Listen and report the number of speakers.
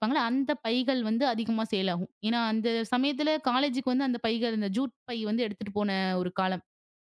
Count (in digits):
1